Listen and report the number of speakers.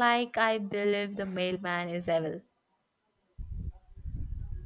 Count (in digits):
1